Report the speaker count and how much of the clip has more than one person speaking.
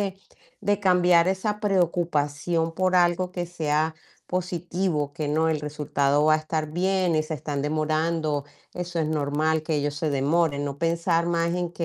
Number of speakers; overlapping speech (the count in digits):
1, no overlap